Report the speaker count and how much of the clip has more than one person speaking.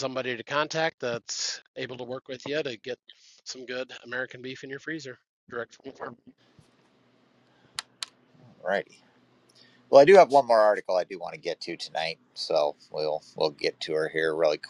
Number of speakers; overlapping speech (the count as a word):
two, no overlap